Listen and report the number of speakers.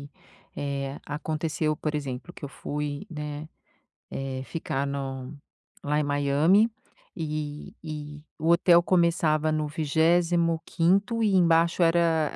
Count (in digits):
1